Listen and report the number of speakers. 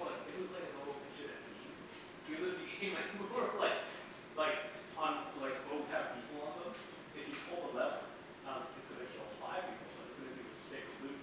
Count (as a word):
one